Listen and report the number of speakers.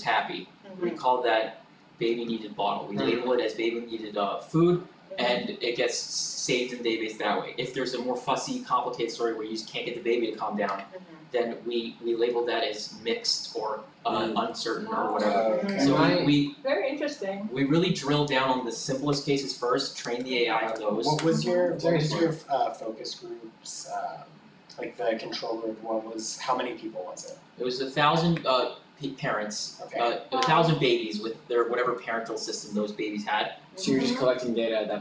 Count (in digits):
4